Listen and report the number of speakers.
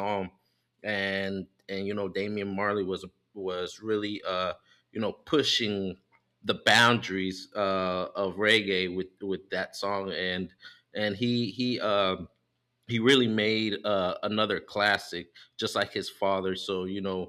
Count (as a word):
one